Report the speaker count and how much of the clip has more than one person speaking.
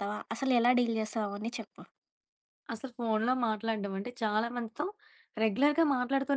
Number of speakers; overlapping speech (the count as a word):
two, no overlap